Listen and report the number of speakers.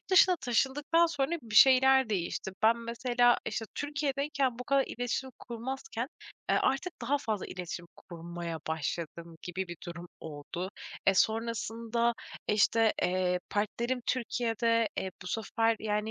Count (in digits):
1